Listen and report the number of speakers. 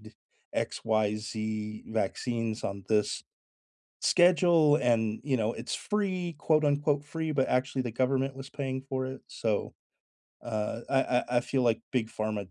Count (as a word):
one